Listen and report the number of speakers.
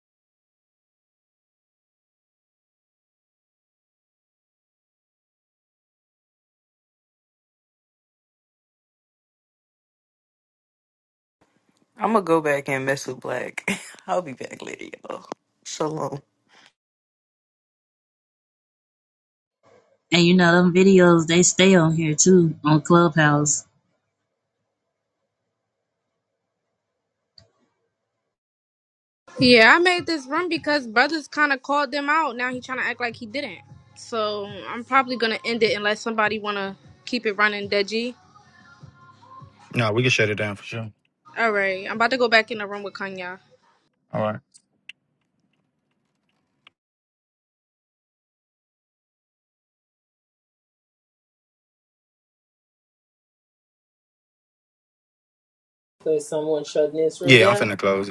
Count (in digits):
5